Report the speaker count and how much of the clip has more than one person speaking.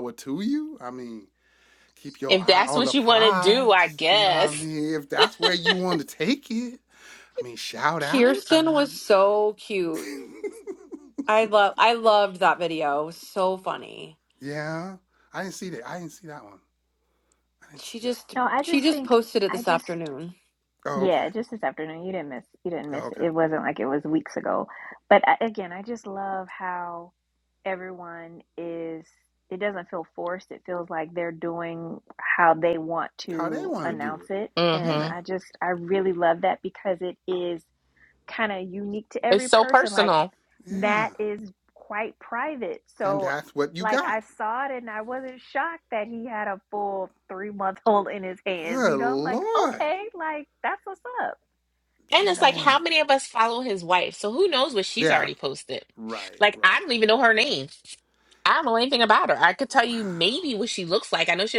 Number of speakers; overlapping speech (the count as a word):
four, about 18%